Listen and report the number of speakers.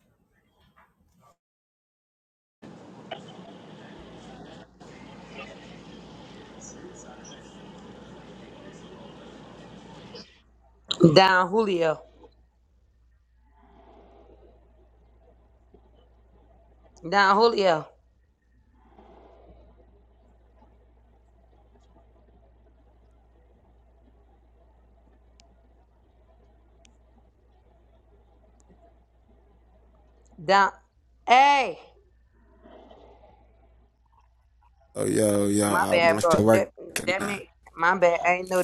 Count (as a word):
two